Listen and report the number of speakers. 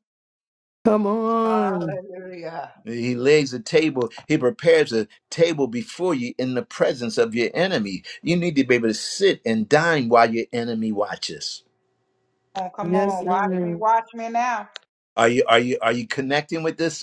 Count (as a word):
three